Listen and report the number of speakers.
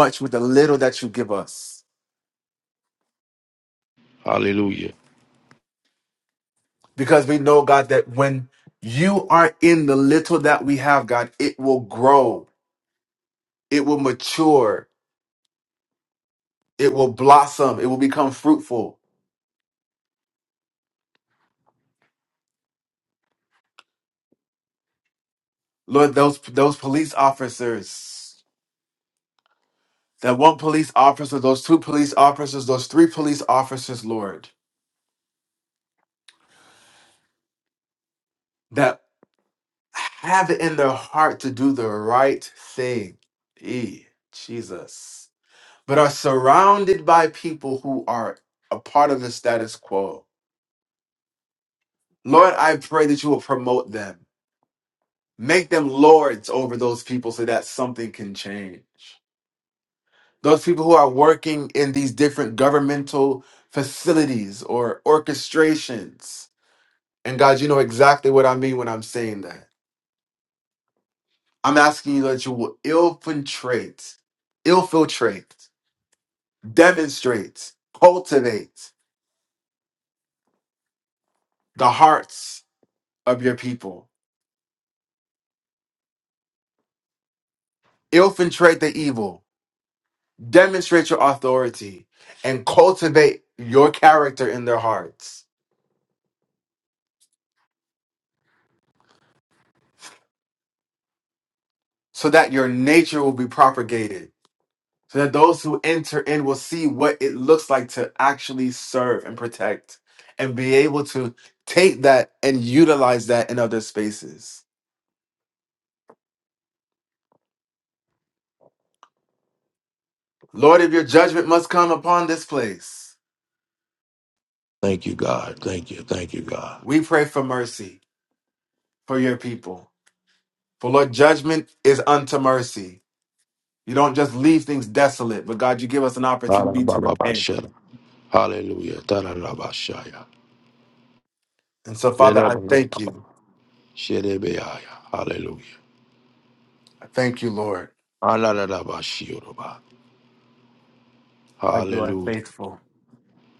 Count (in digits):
2